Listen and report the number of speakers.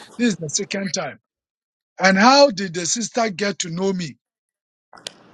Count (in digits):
1